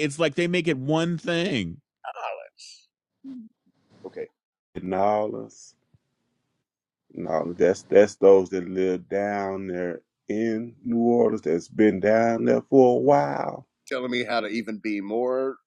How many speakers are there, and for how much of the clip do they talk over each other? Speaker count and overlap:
3, no overlap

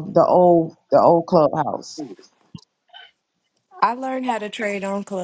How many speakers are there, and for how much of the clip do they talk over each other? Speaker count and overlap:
2, no overlap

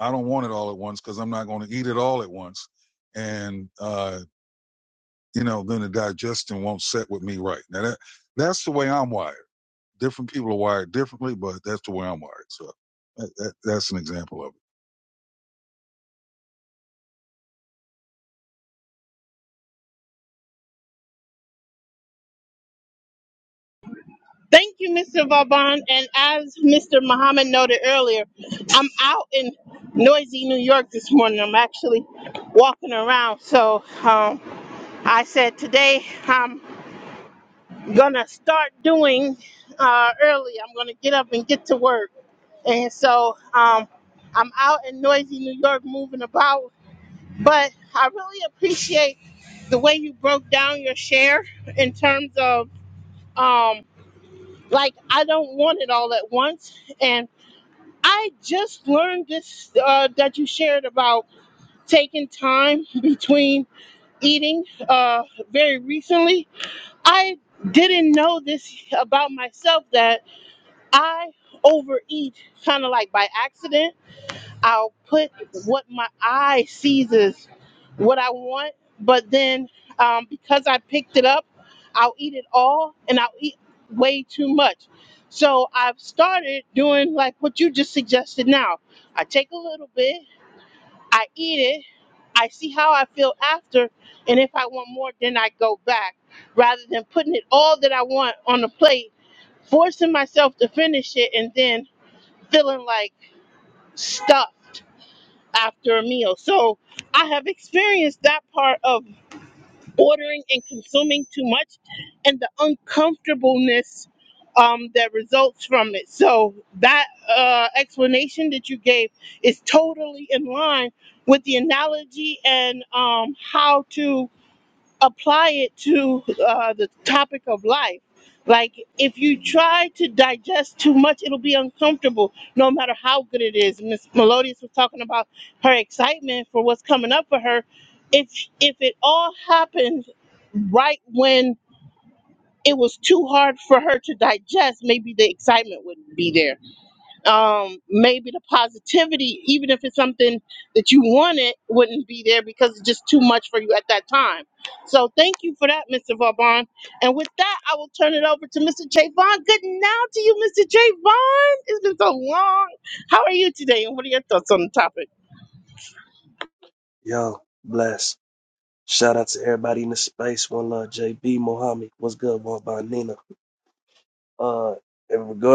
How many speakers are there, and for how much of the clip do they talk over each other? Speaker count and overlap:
3, no overlap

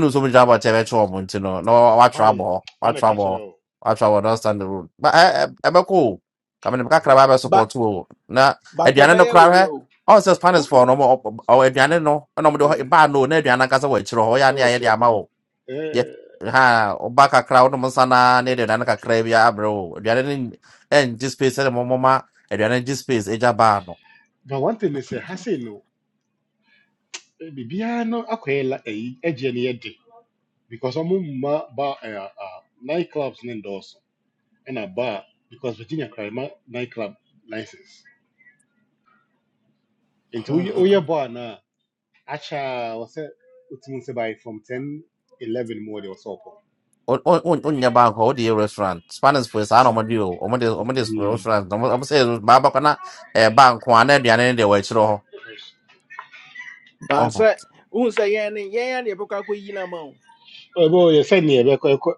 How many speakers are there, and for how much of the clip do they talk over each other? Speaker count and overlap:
3, about 6%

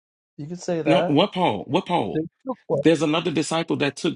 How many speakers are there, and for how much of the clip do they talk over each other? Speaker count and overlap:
2, about 11%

